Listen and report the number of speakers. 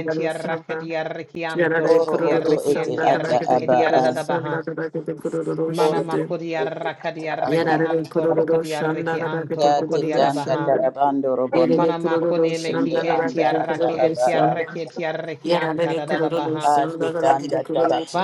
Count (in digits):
3